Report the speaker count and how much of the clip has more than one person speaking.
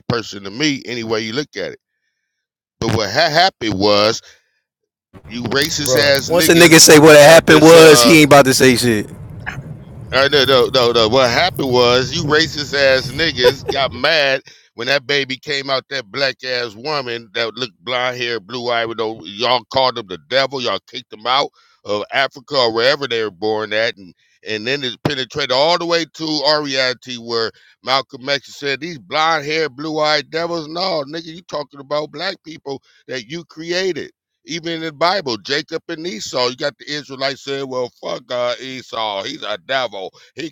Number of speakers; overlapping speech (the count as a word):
two, about 5%